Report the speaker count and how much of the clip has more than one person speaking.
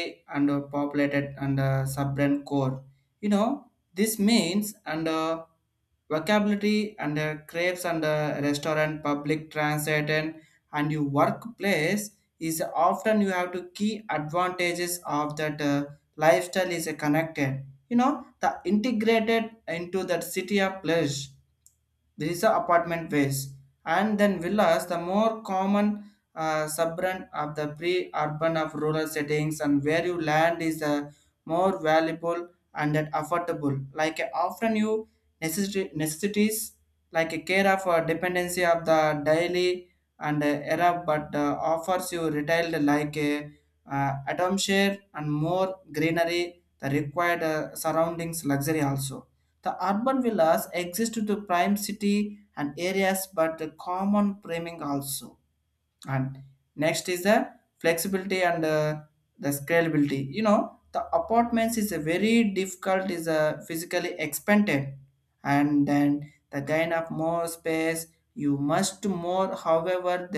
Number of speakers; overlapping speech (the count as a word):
one, no overlap